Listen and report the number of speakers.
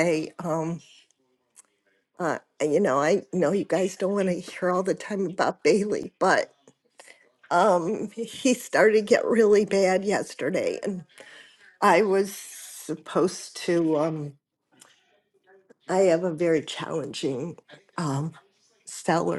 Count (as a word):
one